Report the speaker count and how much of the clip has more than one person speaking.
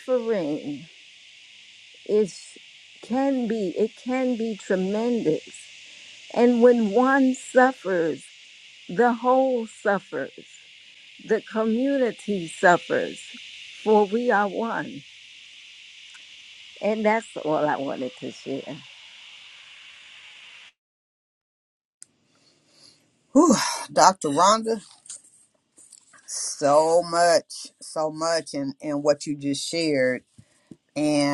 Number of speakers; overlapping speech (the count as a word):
two, no overlap